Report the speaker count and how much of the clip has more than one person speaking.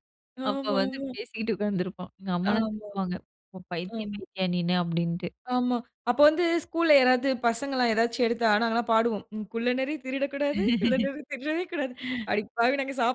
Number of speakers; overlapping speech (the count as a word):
two, about 11%